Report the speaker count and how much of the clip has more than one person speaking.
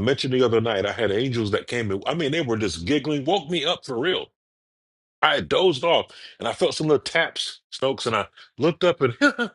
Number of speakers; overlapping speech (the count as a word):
one, no overlap